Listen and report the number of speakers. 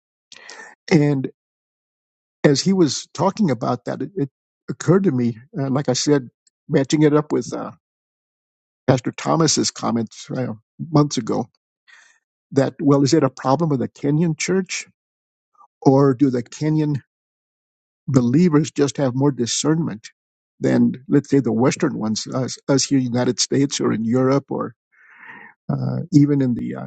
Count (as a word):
one